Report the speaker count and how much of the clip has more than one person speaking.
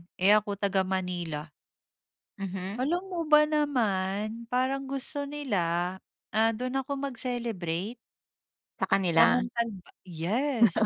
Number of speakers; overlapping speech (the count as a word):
two, about 3%